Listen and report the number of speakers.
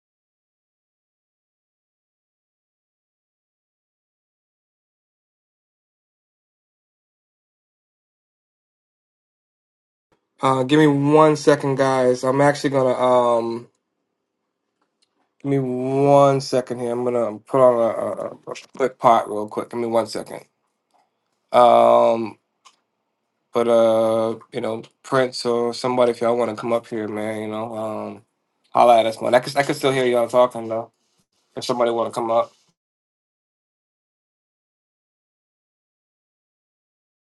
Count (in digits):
1